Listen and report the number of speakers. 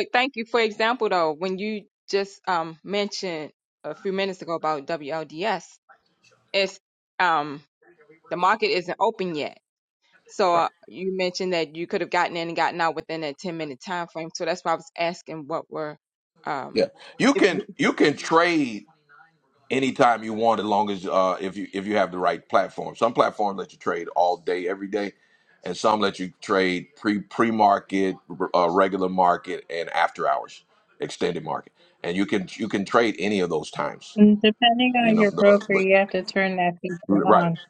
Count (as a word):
three